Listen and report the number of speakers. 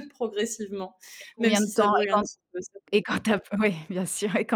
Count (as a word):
two